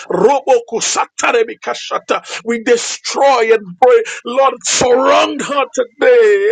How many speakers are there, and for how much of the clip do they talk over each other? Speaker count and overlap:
one, no overlap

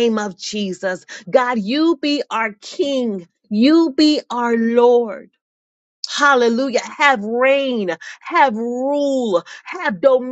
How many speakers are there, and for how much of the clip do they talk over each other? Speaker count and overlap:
one, no overlap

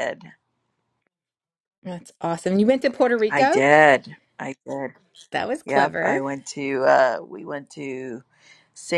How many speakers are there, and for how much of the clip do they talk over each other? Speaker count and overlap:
two, about 10%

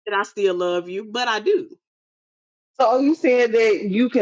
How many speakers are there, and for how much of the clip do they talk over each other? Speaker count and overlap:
two, no overlap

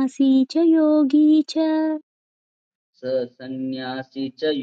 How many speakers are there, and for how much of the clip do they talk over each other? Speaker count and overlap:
two, no overlap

